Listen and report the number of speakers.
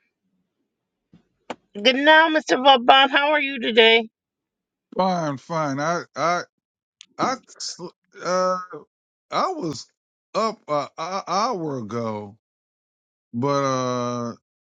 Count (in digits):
2